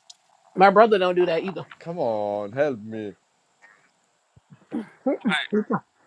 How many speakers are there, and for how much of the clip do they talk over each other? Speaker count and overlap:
2, no overlap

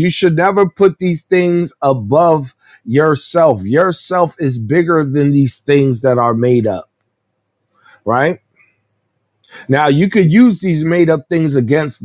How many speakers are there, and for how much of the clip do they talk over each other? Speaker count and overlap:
1, no overlap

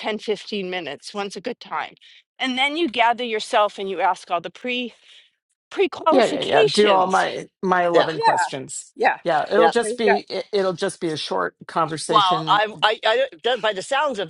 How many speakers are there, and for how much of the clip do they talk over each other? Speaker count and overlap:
3, about 17%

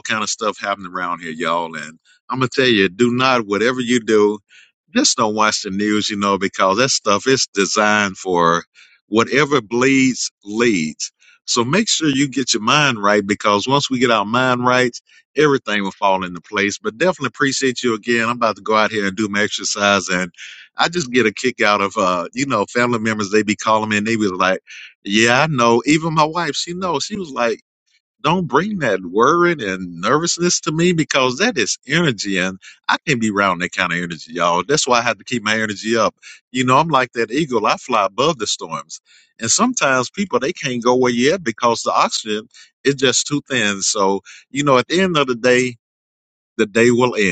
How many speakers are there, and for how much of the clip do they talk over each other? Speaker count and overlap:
1, no overlap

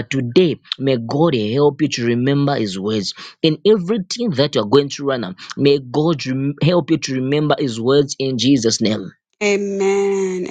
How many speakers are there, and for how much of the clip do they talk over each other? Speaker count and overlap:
2, no overlap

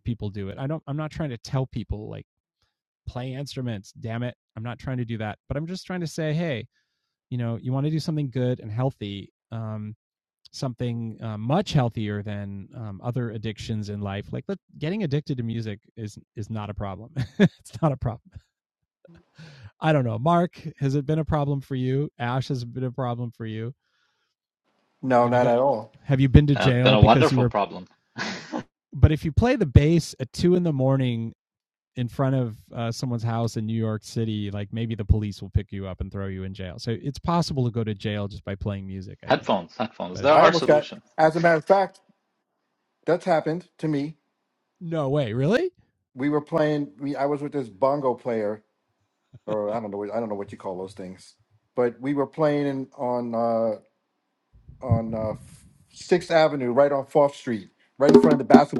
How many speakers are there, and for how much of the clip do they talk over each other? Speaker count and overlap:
3, about 4%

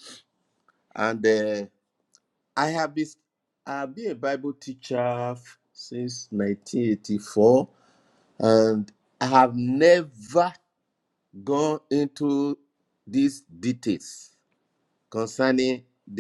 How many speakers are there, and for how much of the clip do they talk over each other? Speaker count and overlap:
1, no overlap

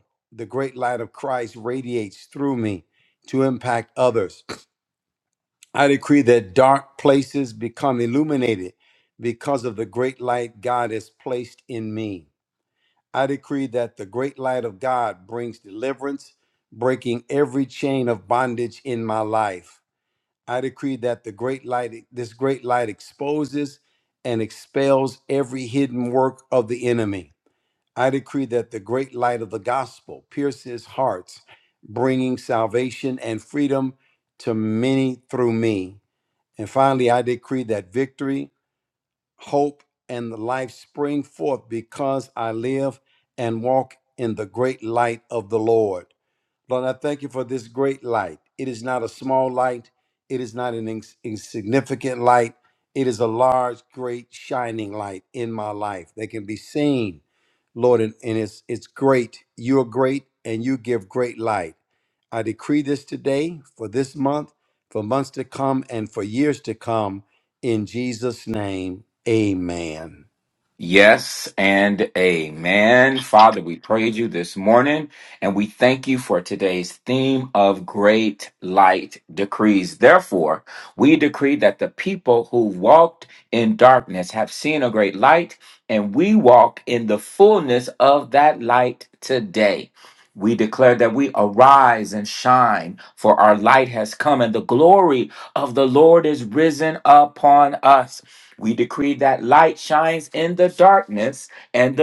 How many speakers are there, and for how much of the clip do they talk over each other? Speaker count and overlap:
2, no overlap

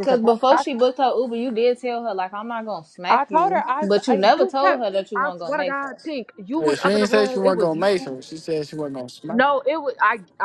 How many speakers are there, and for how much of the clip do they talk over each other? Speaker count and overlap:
3, about 43%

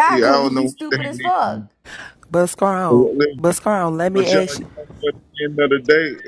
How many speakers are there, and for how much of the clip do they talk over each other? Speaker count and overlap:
3, about 33%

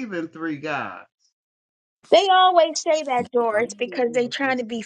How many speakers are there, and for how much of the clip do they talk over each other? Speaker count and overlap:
2, about 21%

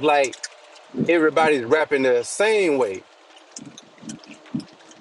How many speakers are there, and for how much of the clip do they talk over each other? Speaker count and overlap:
1, no overlap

